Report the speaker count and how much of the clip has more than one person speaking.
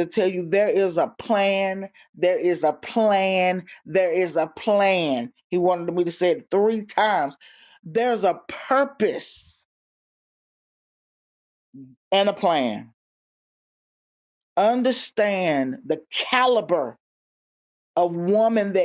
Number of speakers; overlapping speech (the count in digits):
1, no overlap